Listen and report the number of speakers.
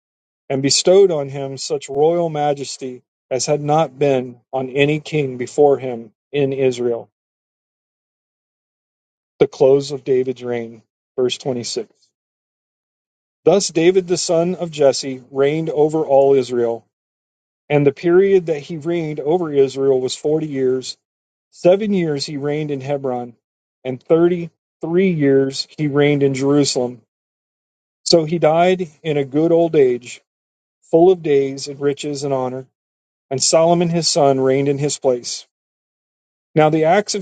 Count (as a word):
one